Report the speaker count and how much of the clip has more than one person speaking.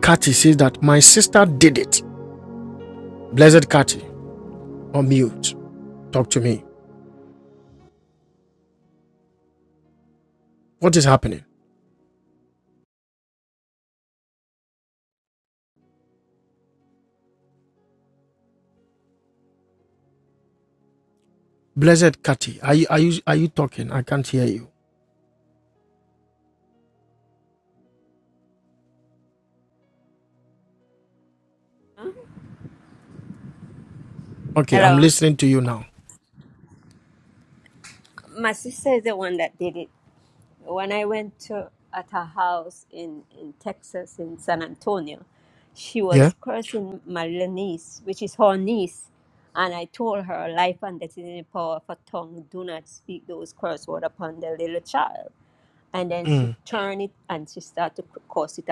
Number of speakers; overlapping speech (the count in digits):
2, about 2%